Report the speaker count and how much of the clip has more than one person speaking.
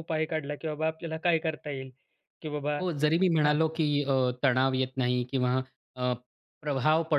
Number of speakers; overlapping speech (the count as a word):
two, about 3%